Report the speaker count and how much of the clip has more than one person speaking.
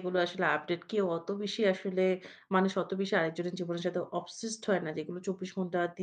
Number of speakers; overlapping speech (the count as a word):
one, no overlap